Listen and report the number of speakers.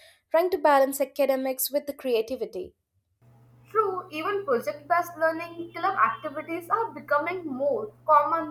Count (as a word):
two